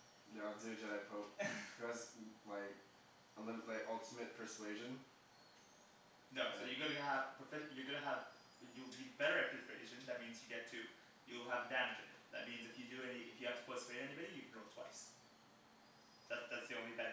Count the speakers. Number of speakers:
two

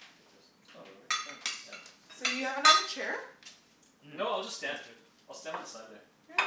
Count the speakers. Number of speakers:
three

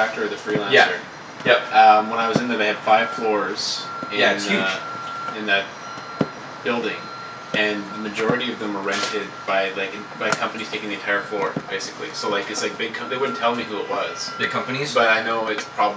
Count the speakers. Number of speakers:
two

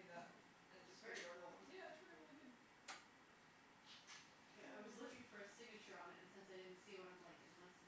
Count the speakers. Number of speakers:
two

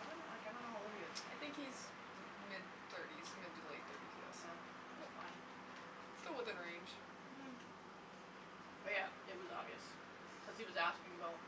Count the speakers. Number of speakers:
two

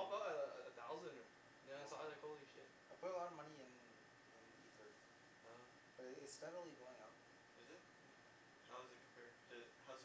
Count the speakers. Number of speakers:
three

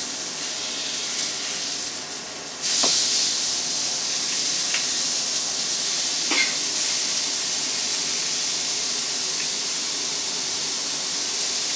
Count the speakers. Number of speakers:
zero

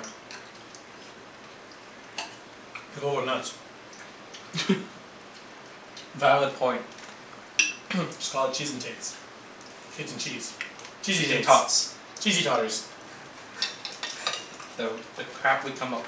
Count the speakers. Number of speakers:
two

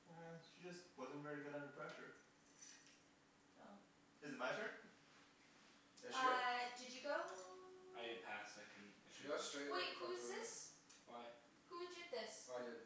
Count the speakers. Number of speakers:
four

